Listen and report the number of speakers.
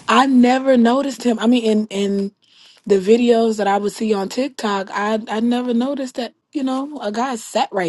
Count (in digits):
1